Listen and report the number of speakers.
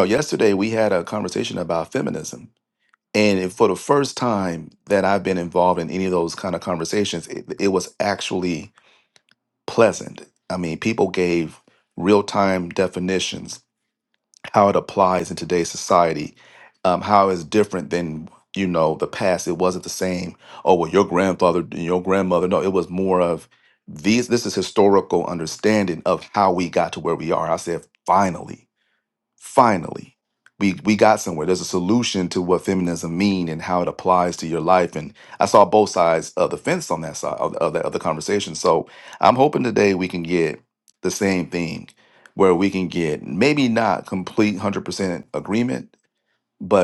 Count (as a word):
one